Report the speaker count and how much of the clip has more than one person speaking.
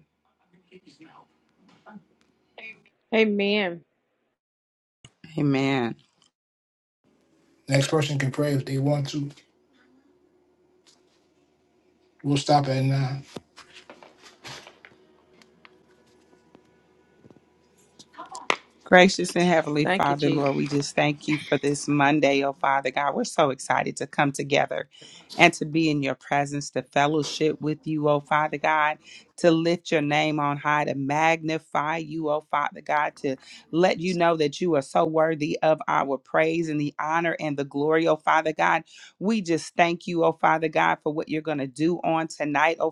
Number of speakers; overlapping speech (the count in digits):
3, about 1%